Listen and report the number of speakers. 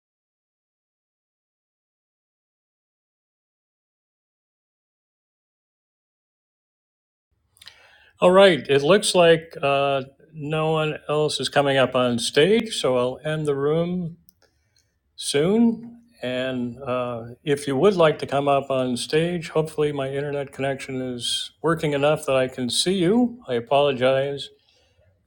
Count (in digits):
1